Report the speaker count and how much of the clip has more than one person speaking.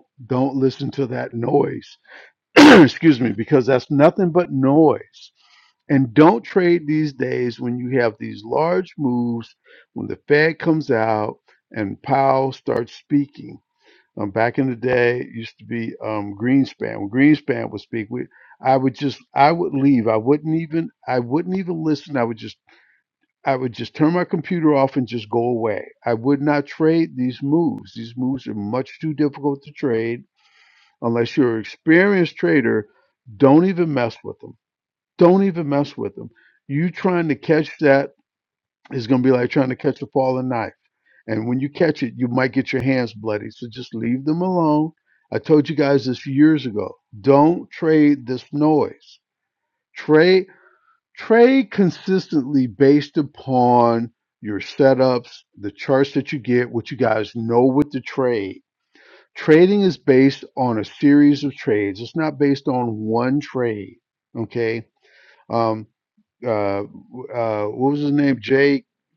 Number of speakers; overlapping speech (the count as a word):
one, no overlap